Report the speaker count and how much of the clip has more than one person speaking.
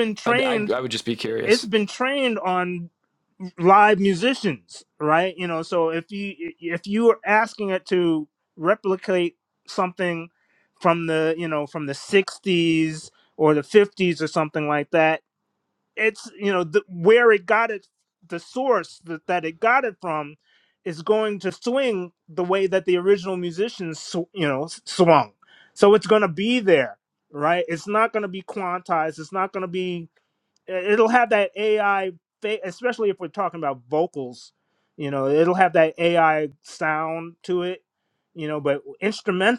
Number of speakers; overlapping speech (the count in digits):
2, about 2%